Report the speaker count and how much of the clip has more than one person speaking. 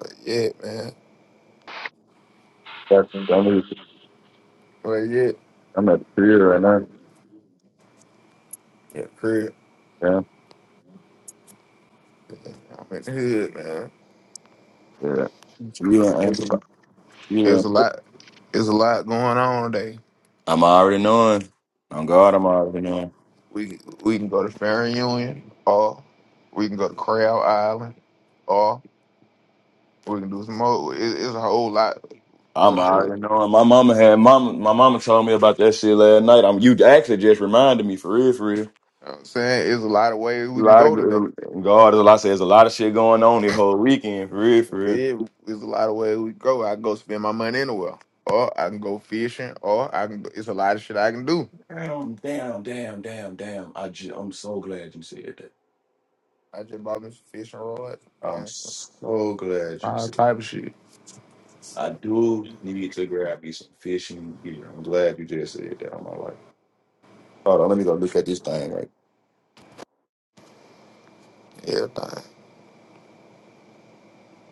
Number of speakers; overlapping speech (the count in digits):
2, about 3%